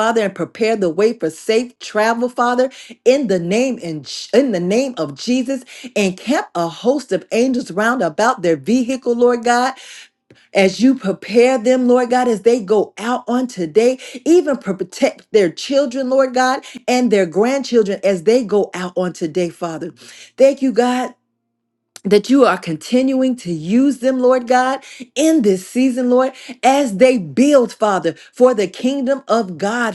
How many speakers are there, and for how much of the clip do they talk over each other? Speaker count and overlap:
one, no overlap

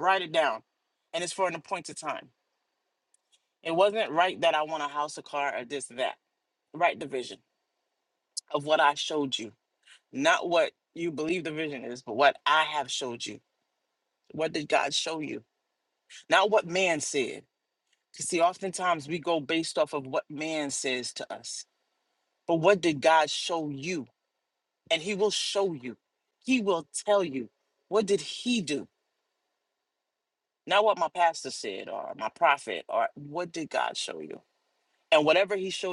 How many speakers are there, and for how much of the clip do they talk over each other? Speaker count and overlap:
one, no overlap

